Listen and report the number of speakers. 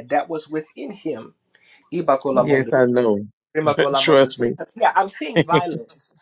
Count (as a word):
two